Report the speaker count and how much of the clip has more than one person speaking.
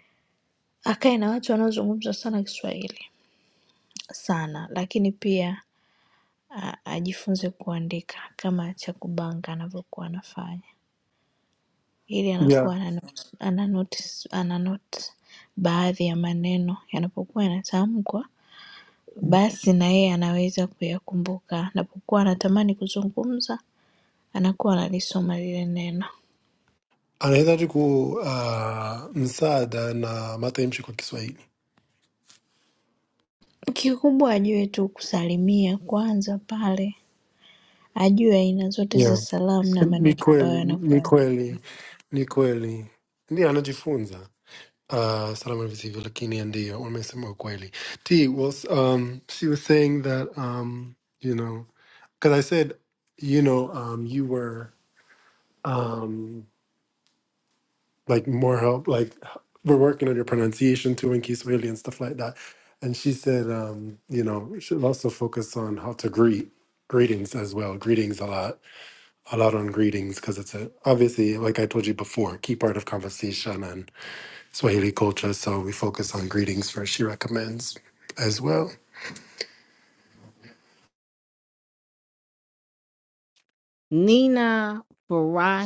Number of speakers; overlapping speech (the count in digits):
3, about 2%